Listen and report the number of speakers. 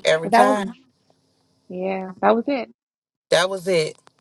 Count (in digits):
2